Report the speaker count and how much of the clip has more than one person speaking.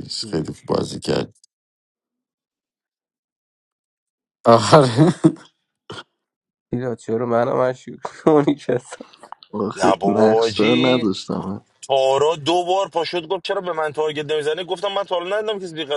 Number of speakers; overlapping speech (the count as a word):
four, about 8%